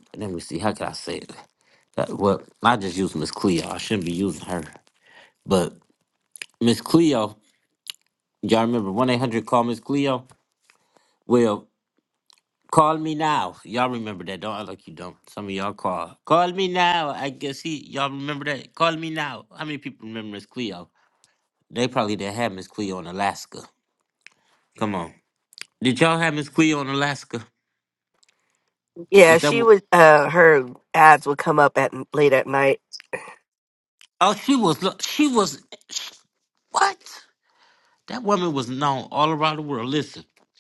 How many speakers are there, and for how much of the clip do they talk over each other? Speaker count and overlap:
2, about 1%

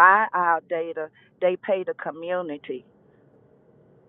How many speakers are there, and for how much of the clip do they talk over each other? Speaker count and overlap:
1, no overlap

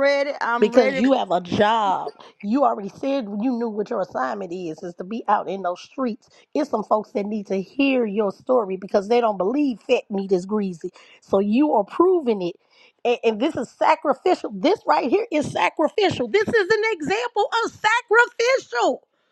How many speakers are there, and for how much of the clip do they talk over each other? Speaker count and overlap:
2, about 2%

